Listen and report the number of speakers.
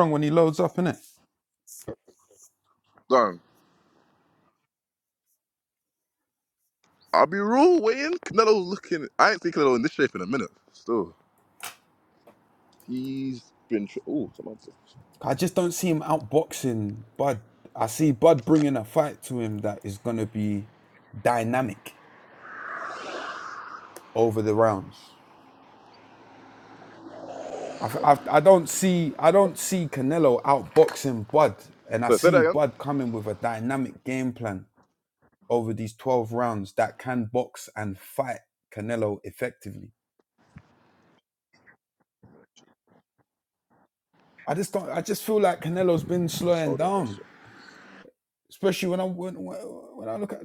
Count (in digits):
2